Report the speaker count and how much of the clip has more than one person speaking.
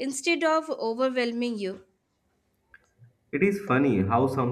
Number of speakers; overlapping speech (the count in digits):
2, no overlap